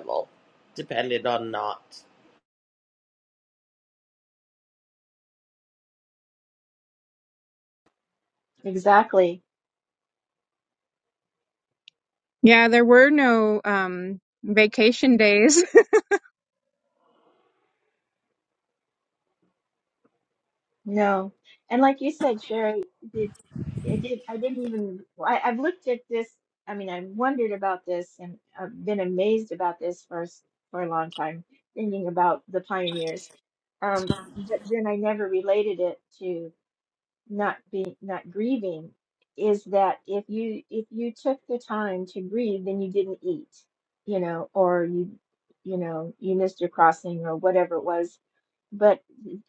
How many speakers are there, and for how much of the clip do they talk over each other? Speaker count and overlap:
3, no overlap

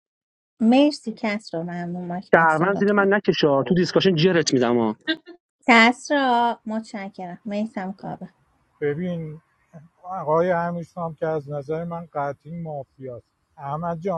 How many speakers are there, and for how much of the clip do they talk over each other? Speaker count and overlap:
3, about 5%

